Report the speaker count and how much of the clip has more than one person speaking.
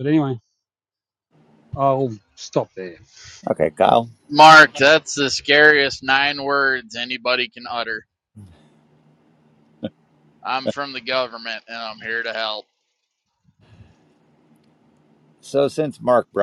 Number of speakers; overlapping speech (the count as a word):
three, no overlap